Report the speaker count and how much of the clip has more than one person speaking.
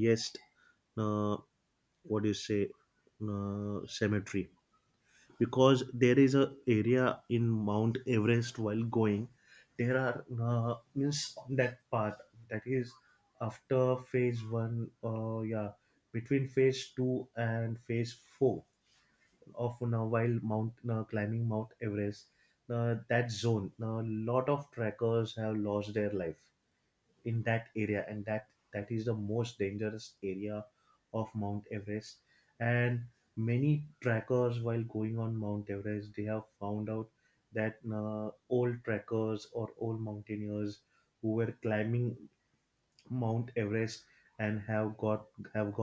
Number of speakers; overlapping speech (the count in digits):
1, no overlap